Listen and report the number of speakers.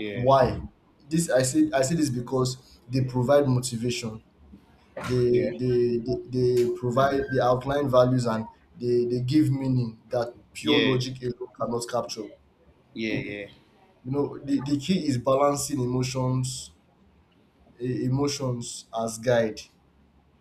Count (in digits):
2